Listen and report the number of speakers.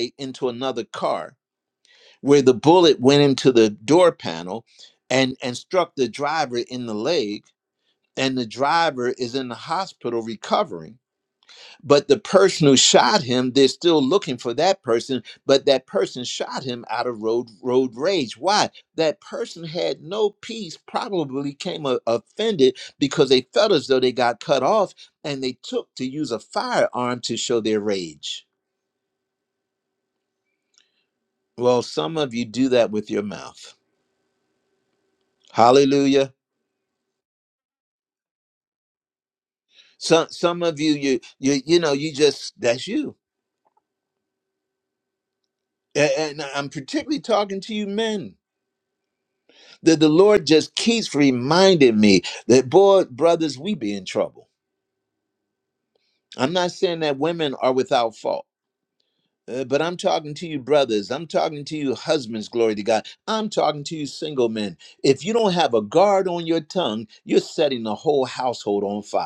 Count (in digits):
1